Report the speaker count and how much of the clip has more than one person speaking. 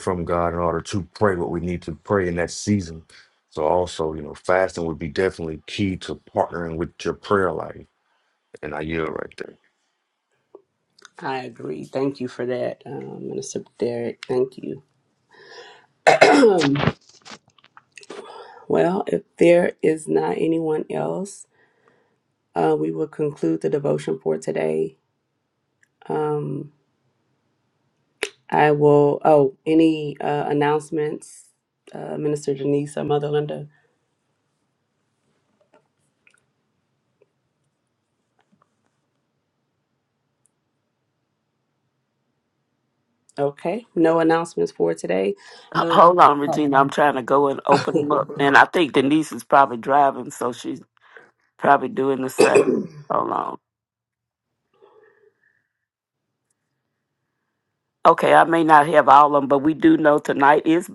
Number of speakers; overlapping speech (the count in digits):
3, about 1%